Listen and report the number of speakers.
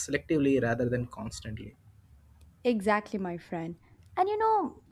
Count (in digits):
2